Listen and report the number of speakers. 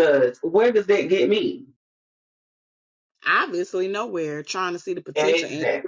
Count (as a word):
two